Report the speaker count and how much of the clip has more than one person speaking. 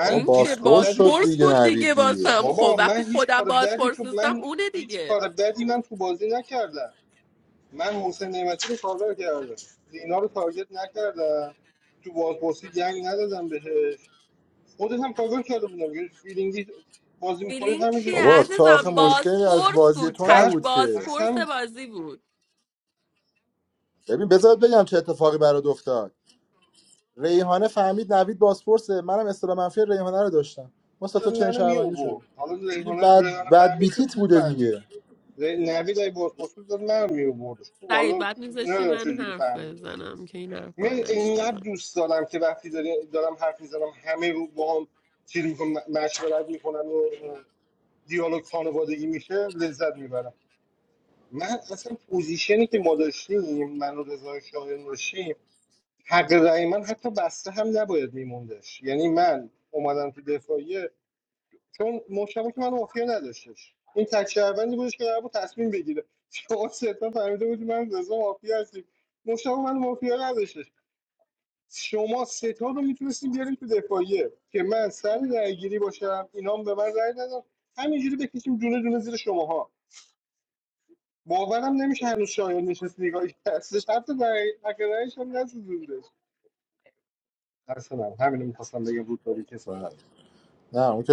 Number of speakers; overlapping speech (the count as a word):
three, about 15%